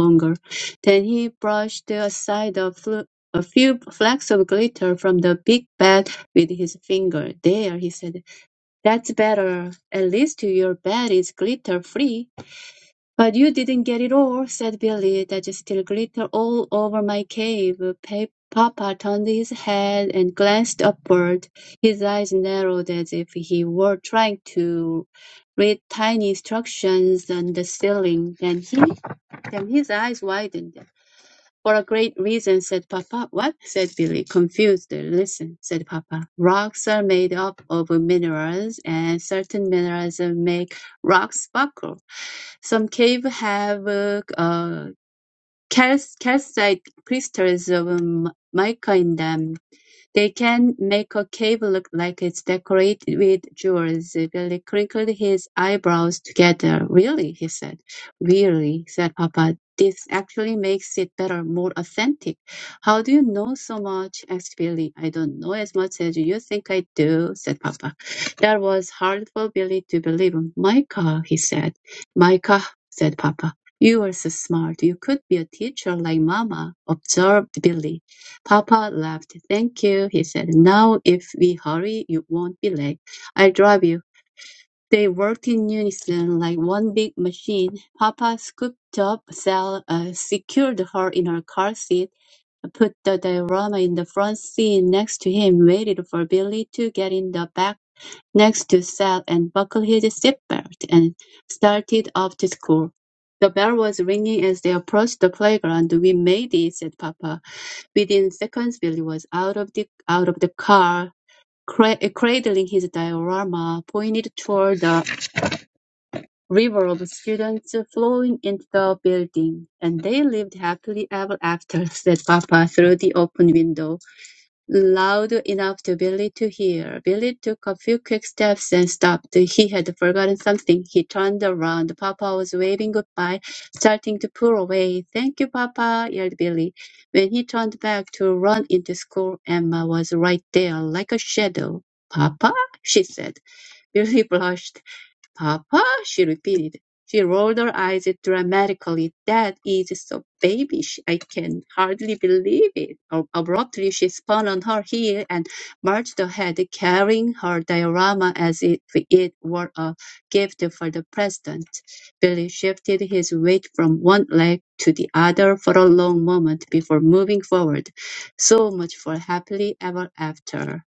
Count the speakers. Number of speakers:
1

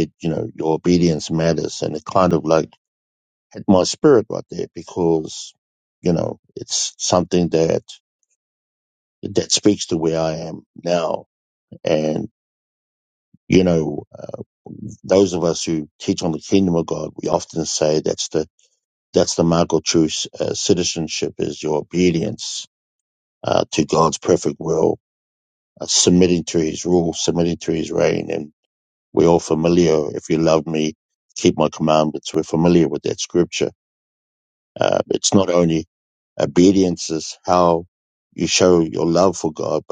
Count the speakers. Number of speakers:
1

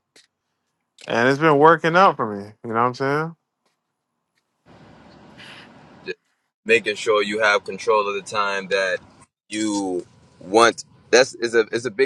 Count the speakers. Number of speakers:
2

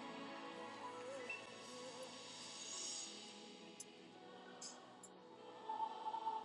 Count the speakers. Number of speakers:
0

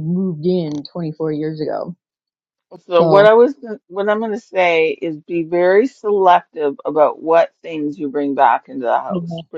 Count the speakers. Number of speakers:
2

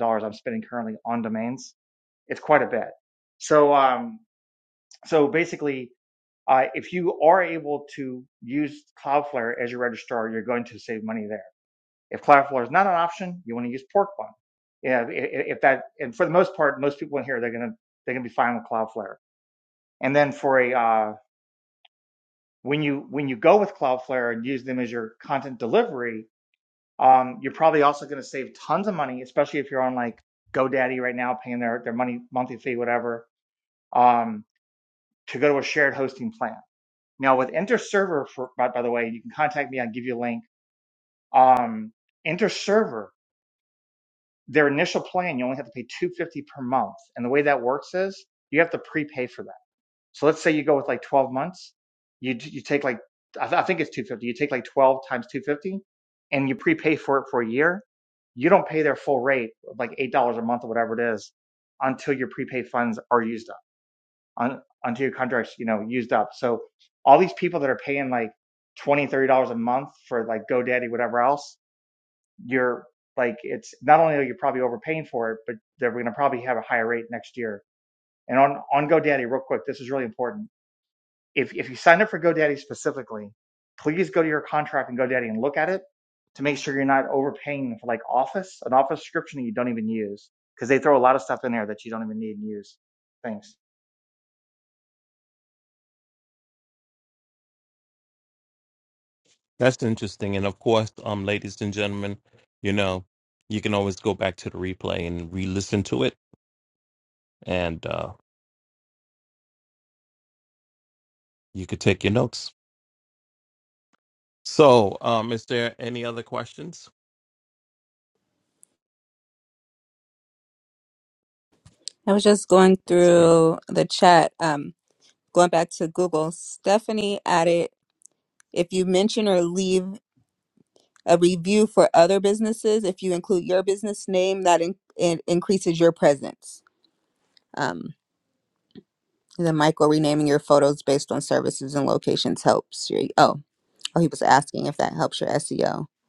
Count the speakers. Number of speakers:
3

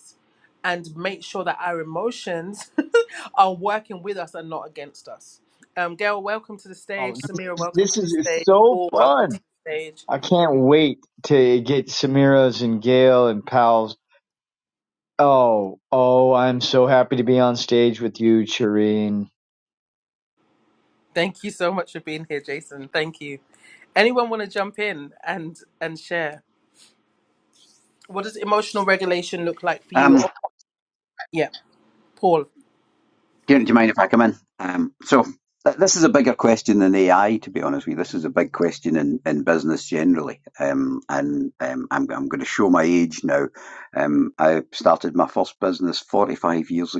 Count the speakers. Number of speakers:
3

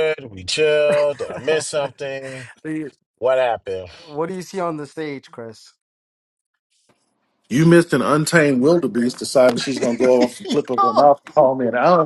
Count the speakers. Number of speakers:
3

